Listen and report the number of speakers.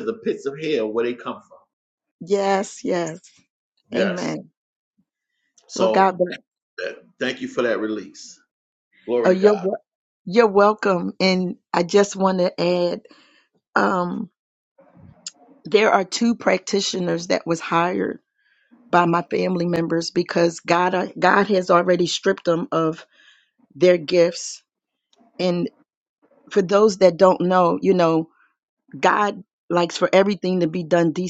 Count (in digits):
2